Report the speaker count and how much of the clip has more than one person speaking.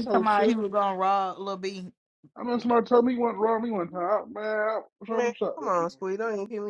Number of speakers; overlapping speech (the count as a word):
three, about 20%